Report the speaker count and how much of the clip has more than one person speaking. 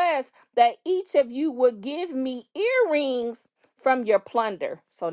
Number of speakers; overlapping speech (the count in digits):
1, no overlap